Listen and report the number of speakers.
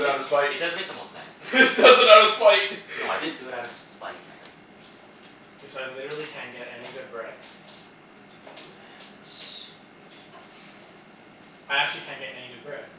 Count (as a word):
three